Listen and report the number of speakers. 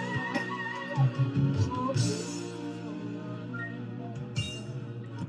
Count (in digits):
0